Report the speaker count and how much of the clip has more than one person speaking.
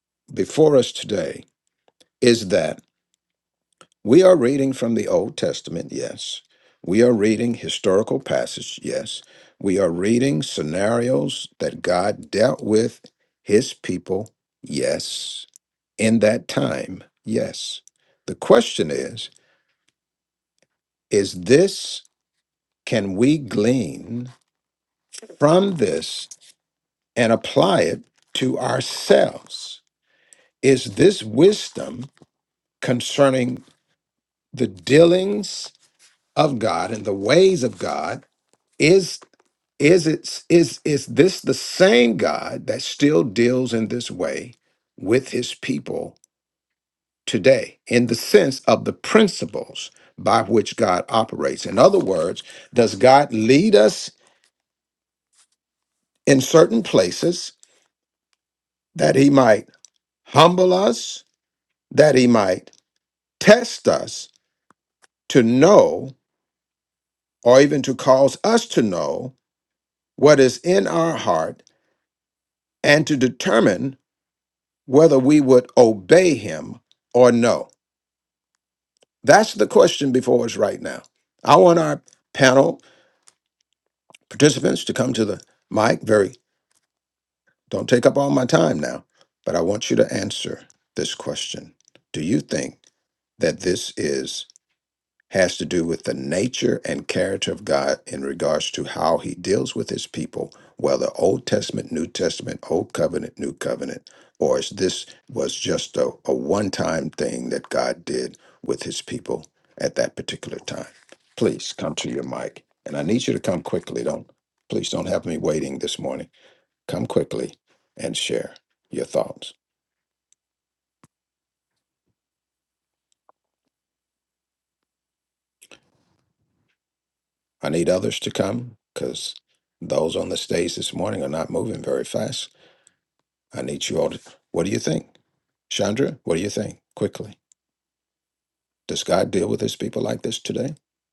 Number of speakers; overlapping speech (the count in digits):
1, no overlap